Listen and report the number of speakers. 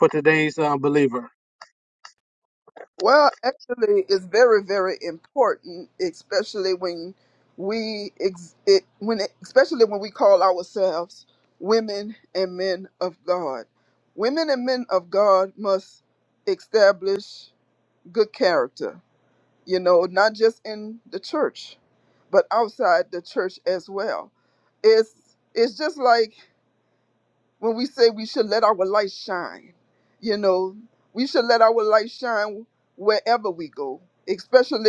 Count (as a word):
two